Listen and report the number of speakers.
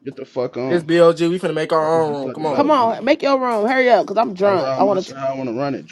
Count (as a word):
three